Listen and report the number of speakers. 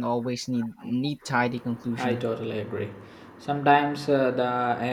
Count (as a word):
two